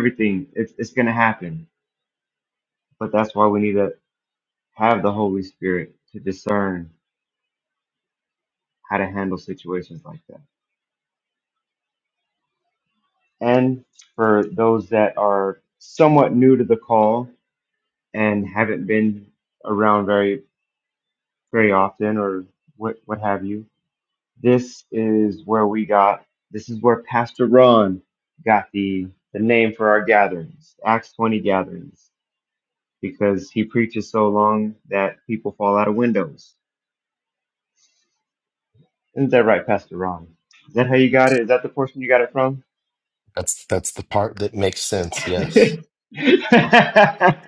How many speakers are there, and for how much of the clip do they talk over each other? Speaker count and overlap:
2, no overlap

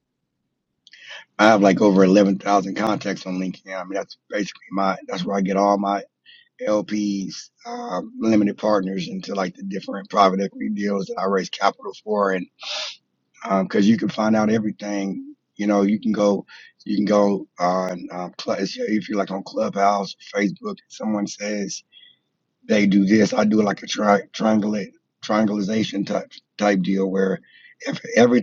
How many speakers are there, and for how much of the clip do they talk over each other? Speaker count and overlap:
1, no overlap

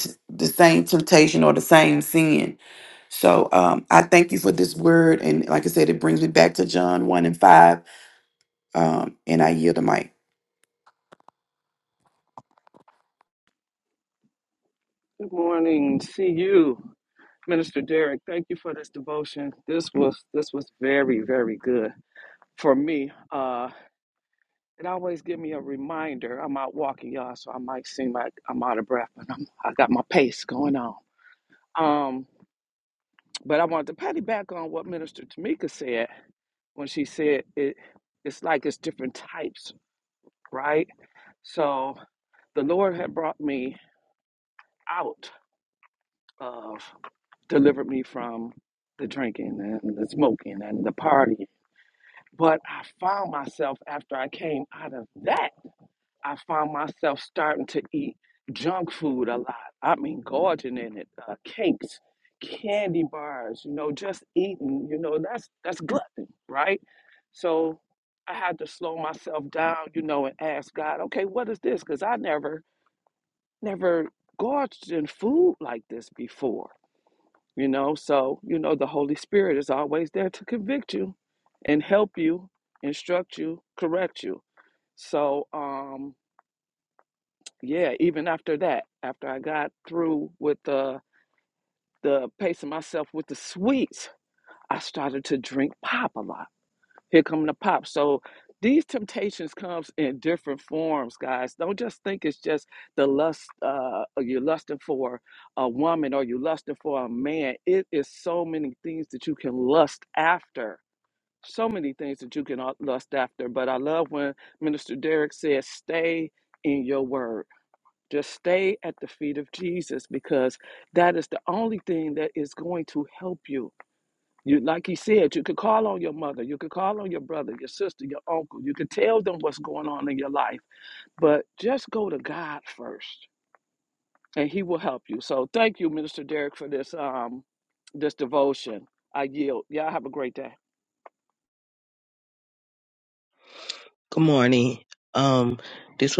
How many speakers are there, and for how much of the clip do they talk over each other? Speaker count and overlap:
3, no overlap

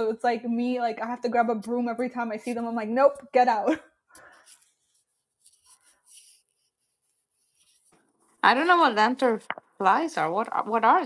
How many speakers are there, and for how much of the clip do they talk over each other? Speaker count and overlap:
2, no overlap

